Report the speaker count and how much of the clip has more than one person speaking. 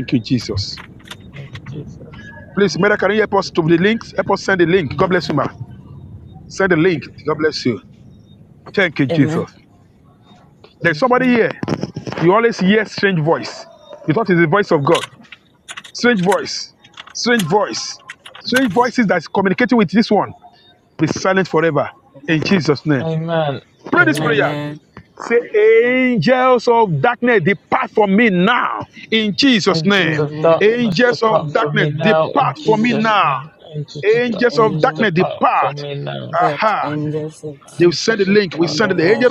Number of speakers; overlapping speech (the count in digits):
3, about 25%